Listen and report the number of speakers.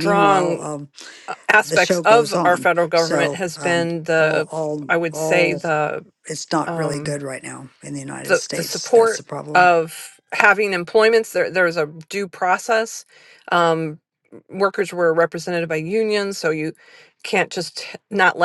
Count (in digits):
2